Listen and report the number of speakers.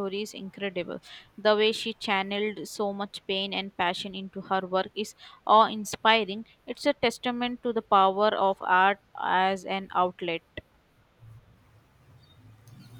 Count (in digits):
1